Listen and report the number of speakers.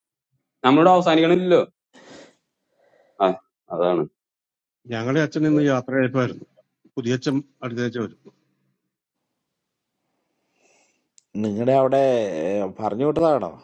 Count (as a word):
three